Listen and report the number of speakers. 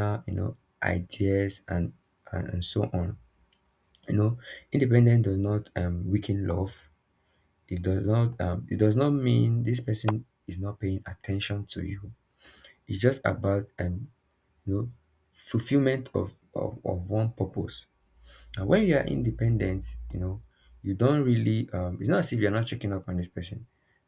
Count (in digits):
1